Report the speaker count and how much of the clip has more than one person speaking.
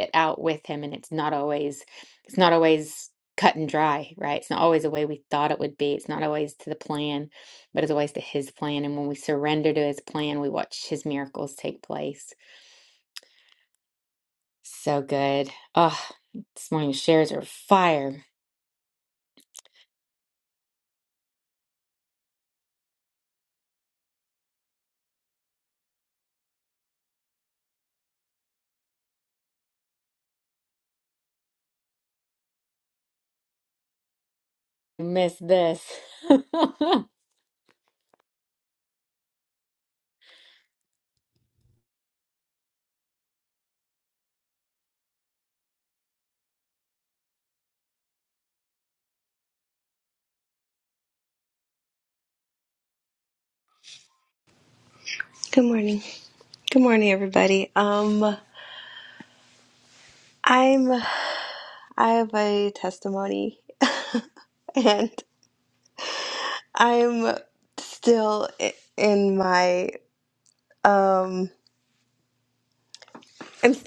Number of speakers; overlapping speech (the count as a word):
two, no overlap